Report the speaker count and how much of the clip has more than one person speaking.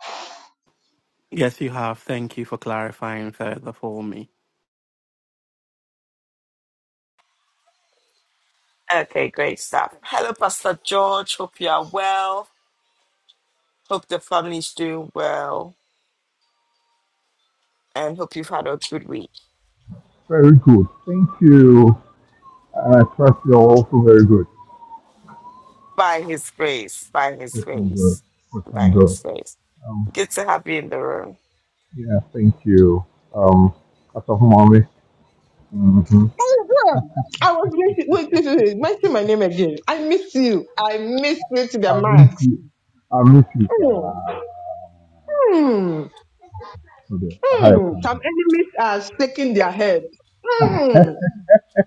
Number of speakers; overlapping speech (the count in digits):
4, about 4%